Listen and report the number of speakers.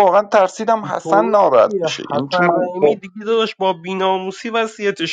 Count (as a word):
two